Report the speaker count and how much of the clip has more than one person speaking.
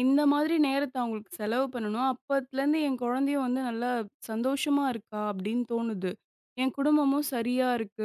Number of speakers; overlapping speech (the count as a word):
one, no overlap